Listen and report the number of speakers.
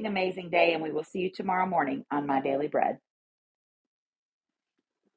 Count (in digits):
1